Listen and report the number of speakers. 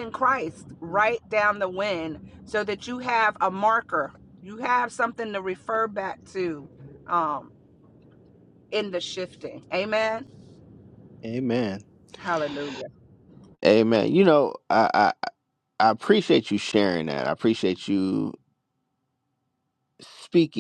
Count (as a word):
two